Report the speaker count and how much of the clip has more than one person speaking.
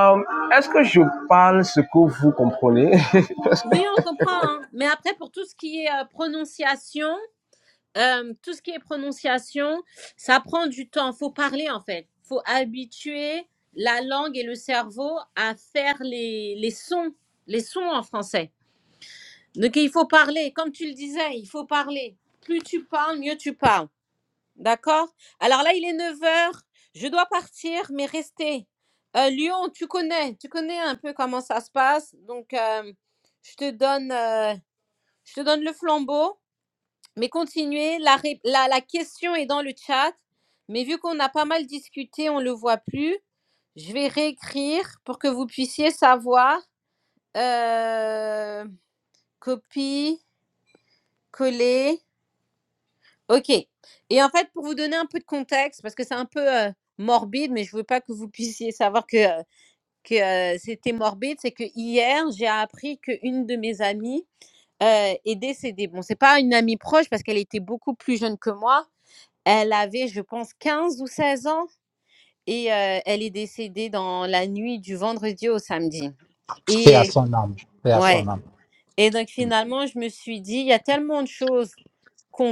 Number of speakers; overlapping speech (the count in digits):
3, about 1%